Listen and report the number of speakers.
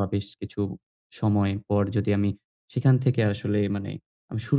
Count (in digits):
1